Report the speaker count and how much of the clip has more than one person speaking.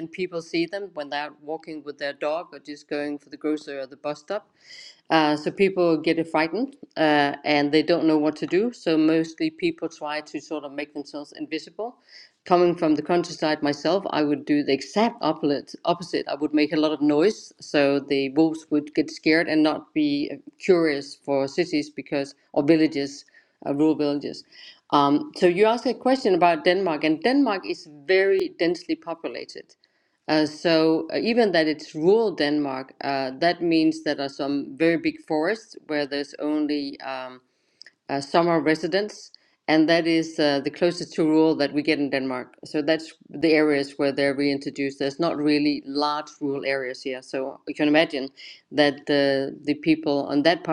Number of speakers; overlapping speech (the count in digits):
1, no overlap